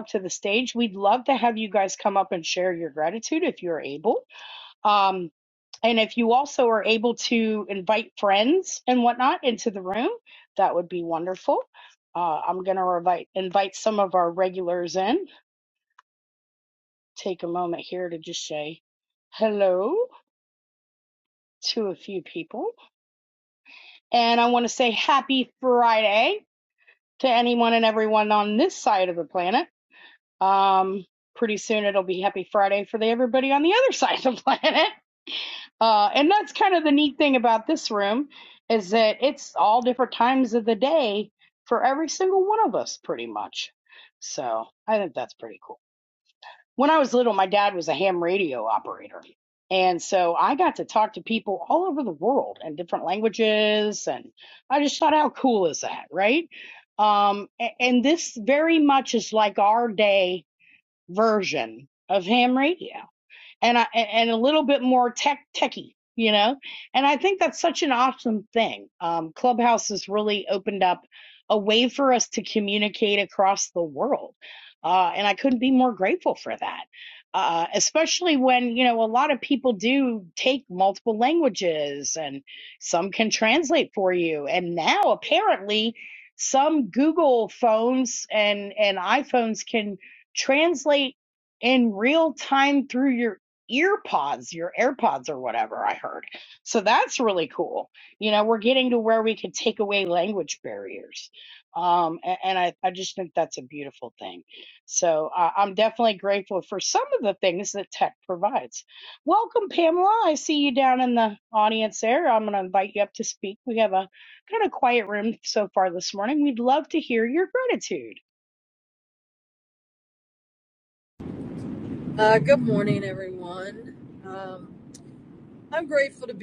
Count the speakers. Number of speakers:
2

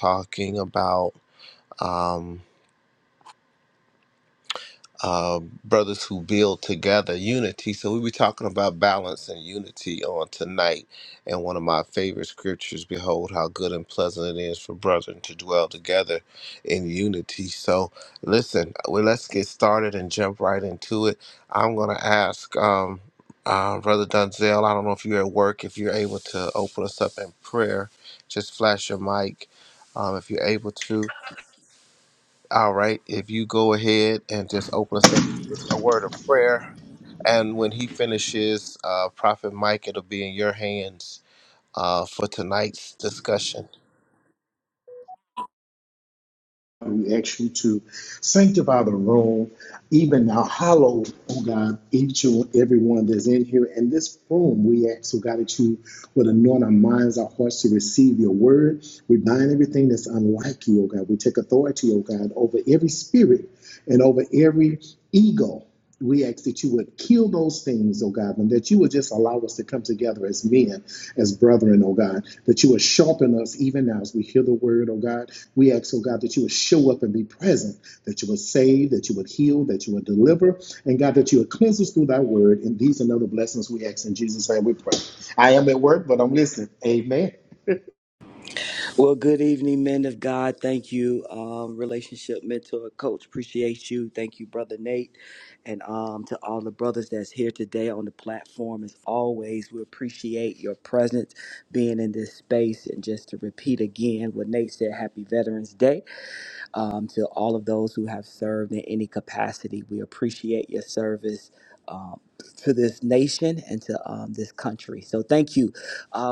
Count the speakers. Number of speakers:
3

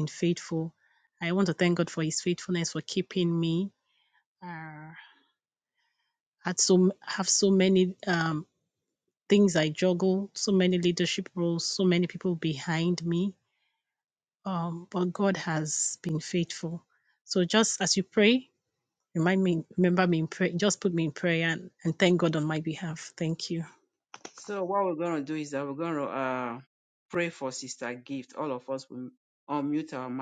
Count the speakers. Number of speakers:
2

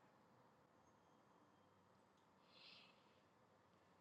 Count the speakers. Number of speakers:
0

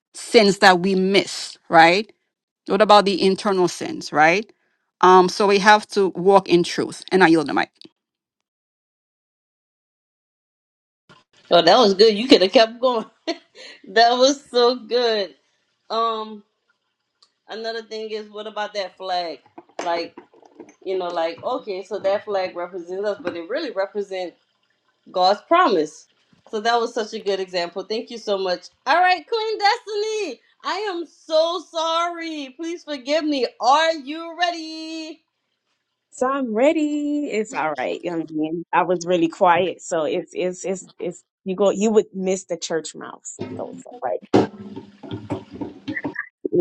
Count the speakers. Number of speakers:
3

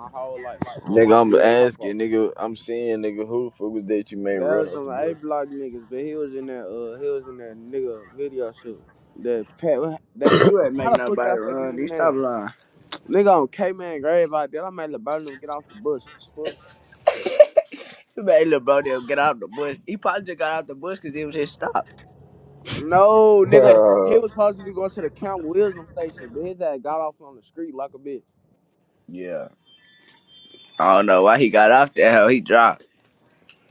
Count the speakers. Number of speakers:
3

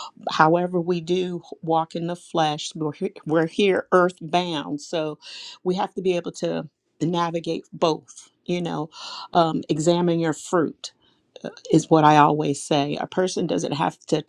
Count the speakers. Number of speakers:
1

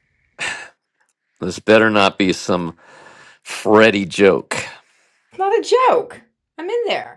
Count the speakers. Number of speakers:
2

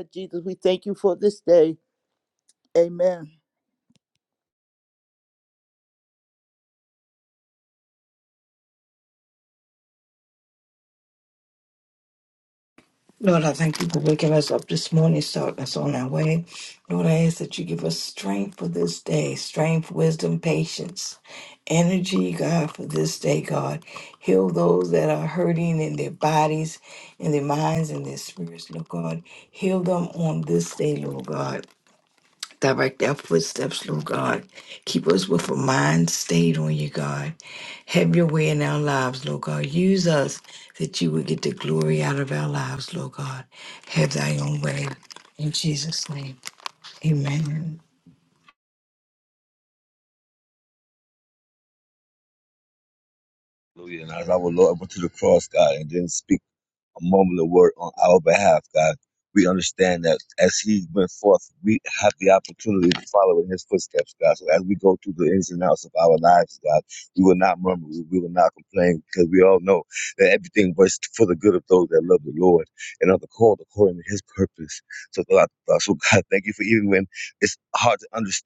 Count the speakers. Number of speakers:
3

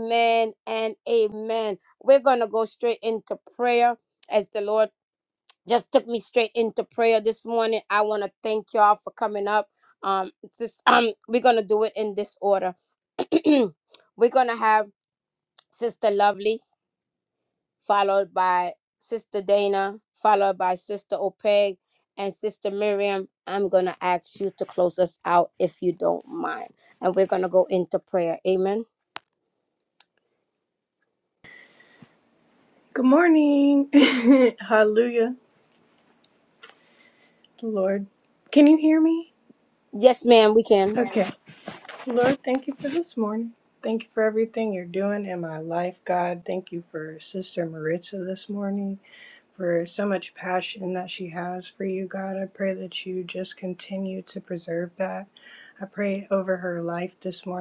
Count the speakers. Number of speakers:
2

